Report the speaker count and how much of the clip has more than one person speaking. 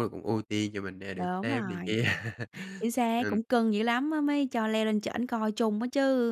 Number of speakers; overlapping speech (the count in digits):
2, about 15%